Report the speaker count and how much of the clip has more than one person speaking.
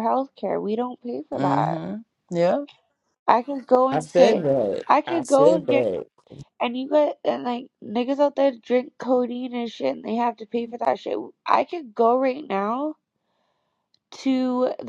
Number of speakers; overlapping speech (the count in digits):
3, about 13%